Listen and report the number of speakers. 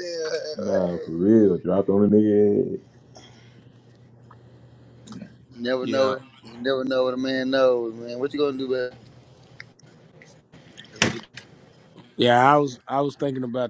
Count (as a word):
three